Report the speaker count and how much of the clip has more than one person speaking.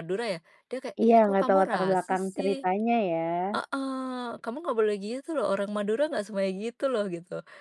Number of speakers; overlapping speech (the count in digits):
2, about 22%